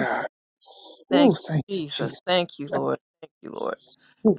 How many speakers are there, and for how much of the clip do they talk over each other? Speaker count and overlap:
two, about 15%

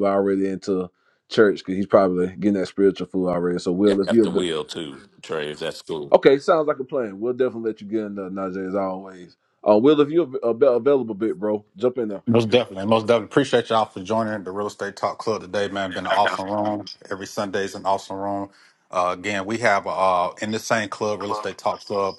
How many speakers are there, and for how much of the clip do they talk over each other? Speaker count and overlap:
three, about 3%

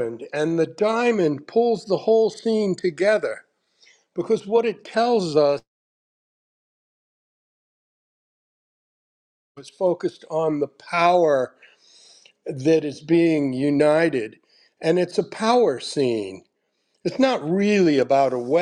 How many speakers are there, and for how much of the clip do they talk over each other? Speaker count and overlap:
one, no overlap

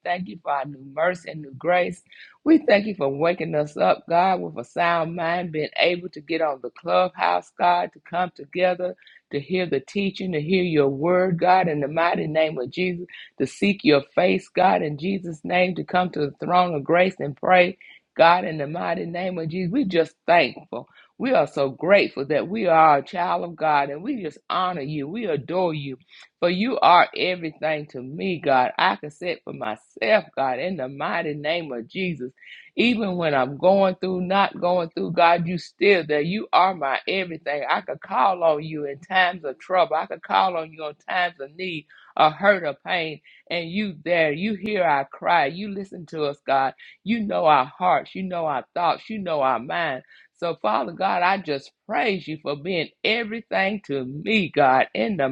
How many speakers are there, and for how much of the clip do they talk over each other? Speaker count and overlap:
one, no overlap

